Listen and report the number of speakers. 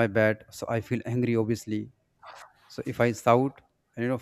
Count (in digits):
1